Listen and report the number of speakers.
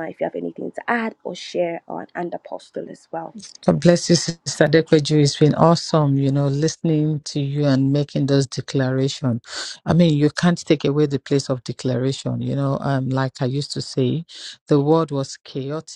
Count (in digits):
2